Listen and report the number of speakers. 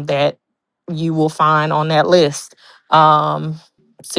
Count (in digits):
1